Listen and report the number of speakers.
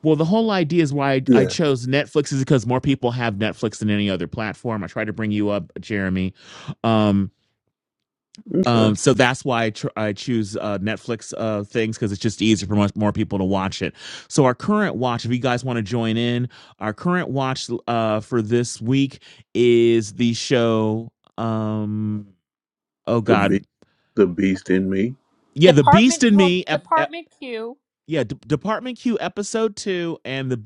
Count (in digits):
3